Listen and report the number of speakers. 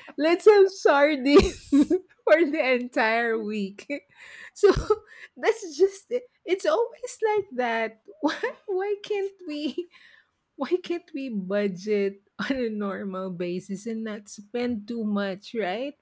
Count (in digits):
1